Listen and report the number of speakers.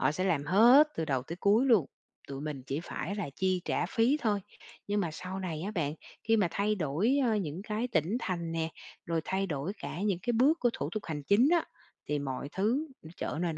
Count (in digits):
1